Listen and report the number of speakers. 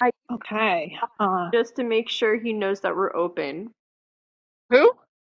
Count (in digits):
2